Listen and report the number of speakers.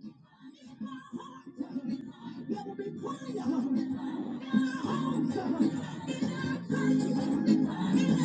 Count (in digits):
0